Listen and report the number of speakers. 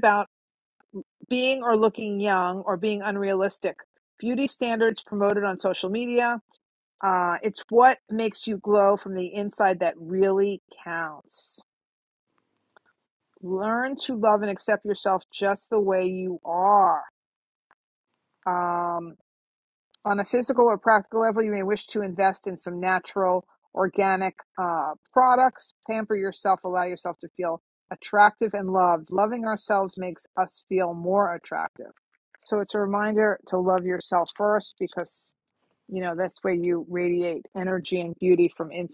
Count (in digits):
1